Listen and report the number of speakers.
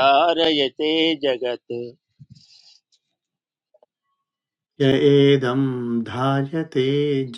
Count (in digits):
2